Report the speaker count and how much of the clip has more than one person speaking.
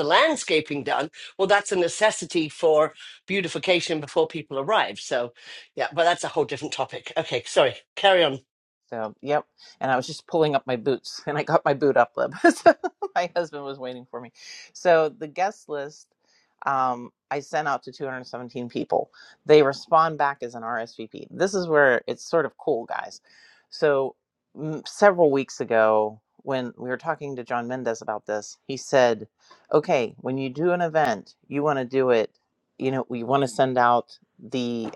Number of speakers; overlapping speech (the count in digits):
2, no overlap